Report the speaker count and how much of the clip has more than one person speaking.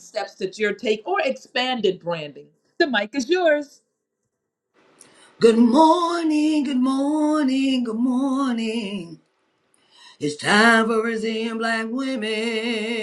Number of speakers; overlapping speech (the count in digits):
2, no overlap